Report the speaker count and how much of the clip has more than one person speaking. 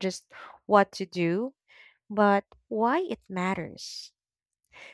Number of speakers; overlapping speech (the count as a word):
one, no overlap